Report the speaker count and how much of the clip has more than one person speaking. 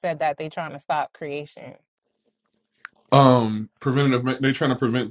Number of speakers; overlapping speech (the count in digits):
2, no overlap